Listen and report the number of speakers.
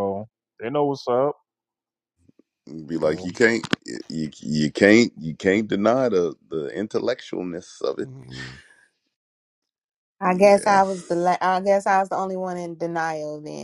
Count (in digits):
3